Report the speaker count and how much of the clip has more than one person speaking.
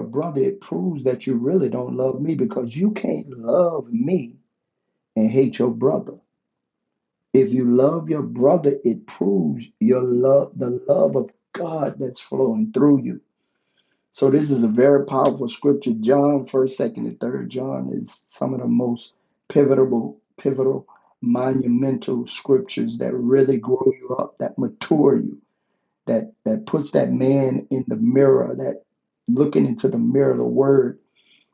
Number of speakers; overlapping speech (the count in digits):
1, no overlap